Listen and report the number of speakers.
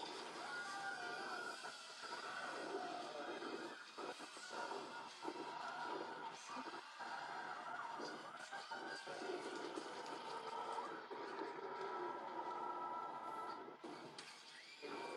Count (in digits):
0